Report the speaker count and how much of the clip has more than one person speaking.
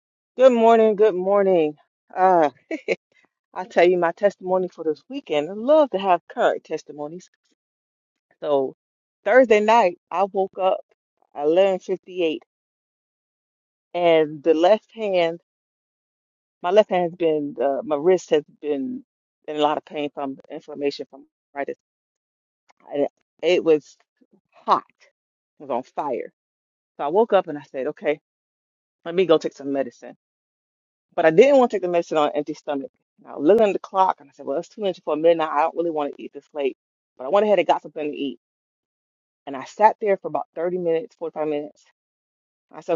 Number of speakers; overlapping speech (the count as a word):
one, no overlap